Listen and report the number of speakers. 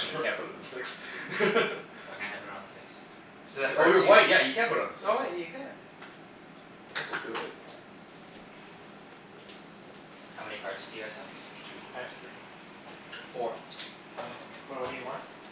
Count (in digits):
4